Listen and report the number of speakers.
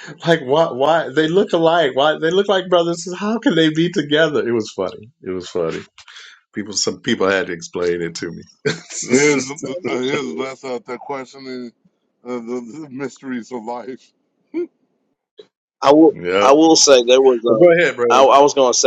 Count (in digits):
3